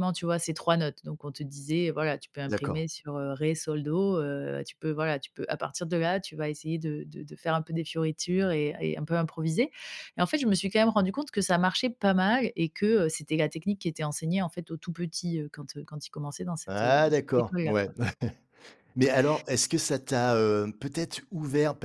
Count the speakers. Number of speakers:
two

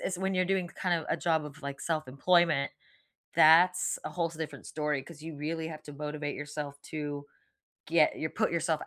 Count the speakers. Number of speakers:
one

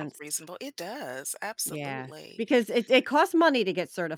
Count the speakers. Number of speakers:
two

